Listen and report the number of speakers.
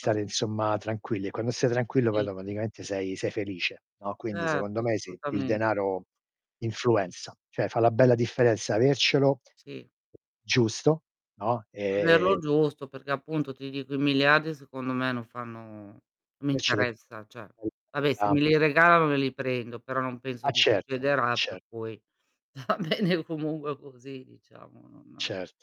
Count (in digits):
2